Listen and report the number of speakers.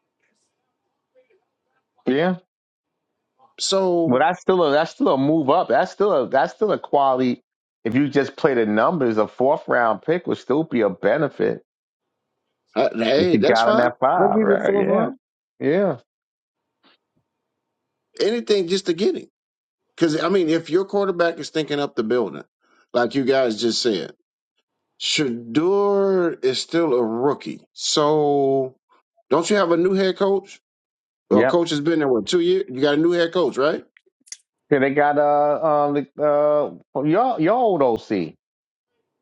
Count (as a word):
two